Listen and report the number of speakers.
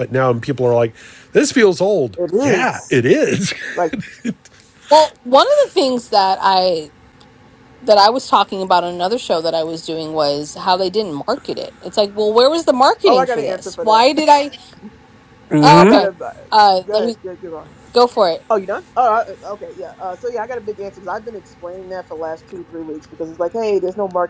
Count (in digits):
3